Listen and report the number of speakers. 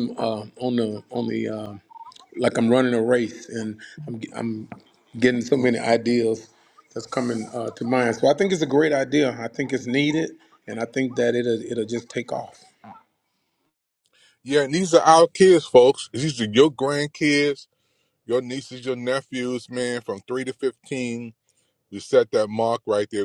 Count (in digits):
2